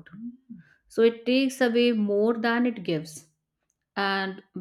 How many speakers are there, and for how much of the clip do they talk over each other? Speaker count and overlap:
1, no overlap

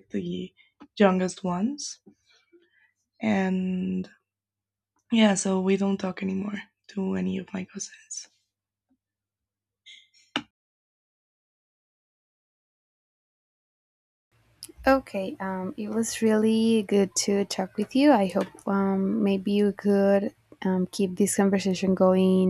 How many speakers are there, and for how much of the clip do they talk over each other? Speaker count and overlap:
2, no overlap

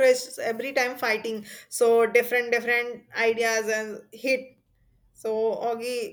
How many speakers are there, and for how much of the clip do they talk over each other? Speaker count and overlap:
1, no overlap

